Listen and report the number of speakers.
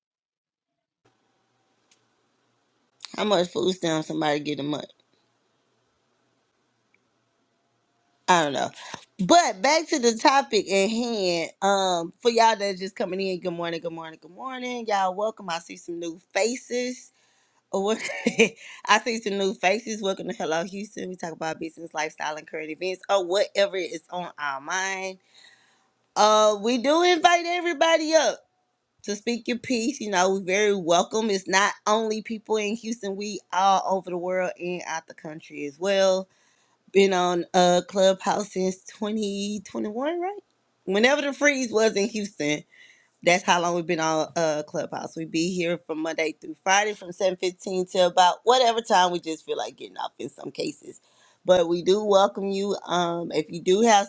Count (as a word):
one